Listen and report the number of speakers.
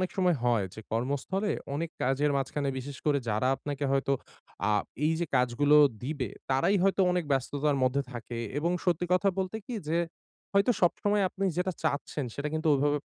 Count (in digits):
1